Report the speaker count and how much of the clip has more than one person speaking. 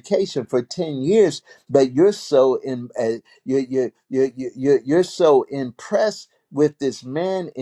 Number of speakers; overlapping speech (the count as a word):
one, no overlap